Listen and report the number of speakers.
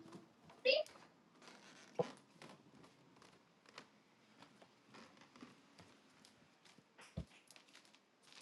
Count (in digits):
0